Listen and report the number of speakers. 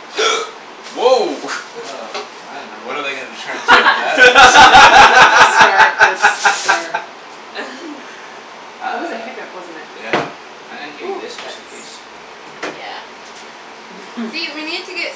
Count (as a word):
four